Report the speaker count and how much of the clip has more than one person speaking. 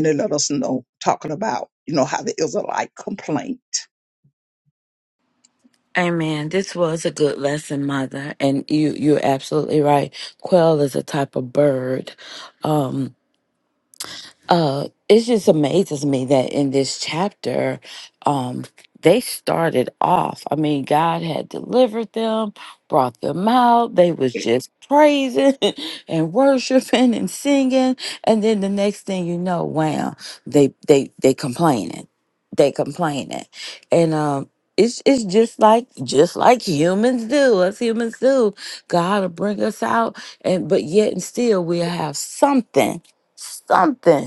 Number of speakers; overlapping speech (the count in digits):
2, no overlap